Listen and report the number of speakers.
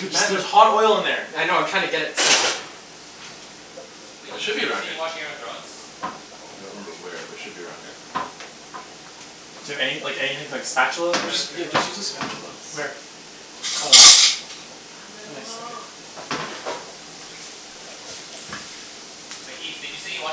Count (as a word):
four